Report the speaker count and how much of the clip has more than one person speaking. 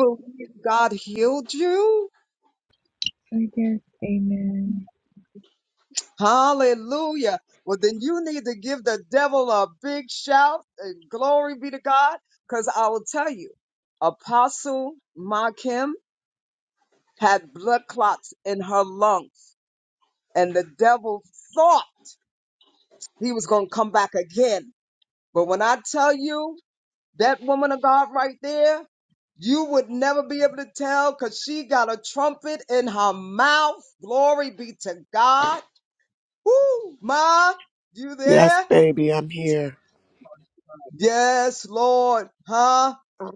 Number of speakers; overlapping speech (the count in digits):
3, about 1%